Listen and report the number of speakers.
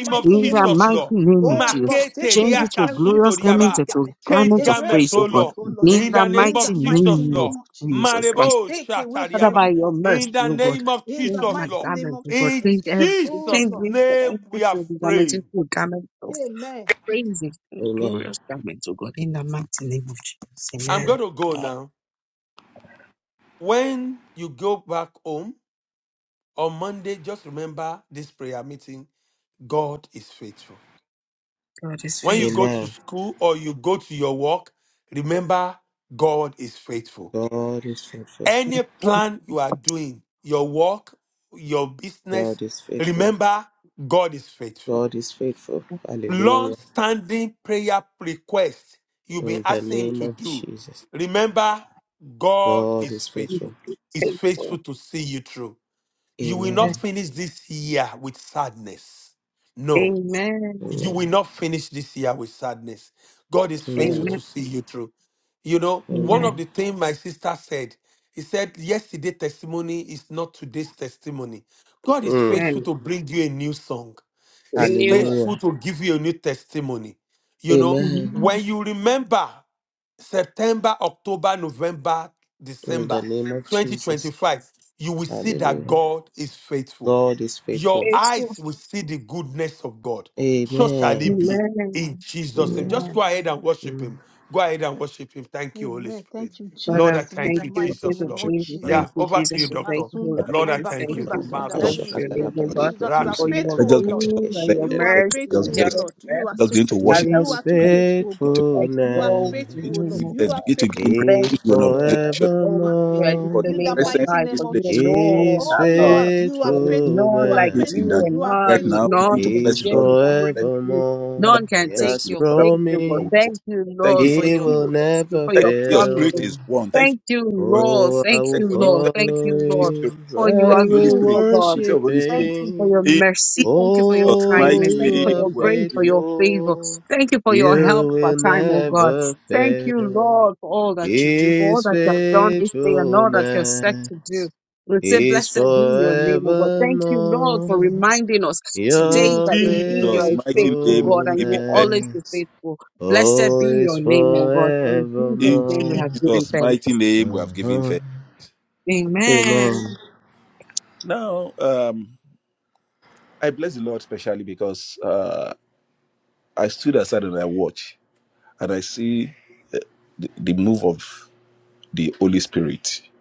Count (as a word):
five